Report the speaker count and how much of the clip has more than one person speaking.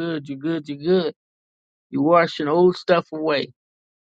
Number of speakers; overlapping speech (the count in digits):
1, no overlap